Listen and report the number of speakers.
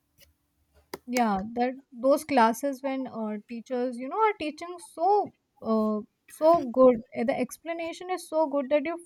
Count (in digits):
1